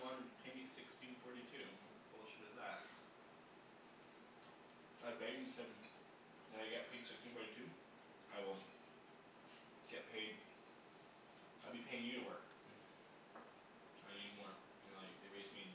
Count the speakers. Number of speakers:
1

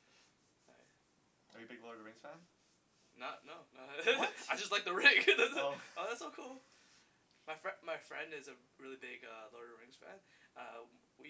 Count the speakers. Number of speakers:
2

